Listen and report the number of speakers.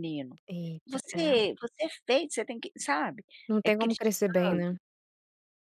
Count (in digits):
2